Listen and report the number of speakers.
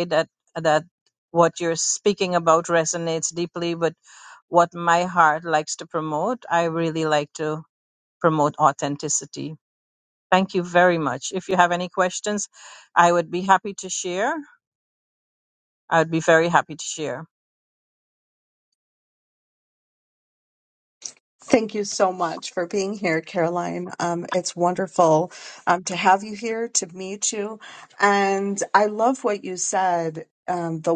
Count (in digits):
2